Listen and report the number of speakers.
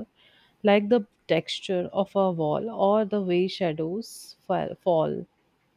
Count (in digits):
1